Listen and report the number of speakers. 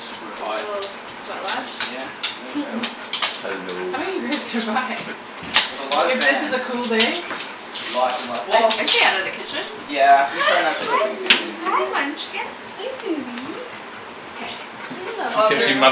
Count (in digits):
4